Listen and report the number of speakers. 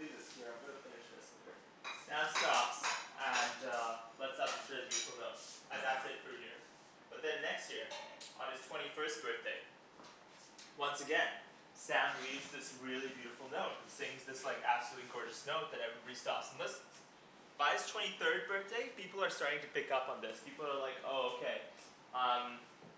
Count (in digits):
1